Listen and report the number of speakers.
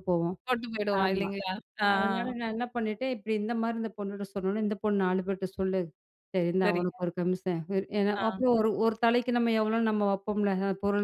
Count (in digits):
2